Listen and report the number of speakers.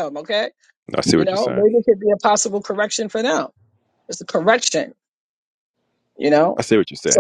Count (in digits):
2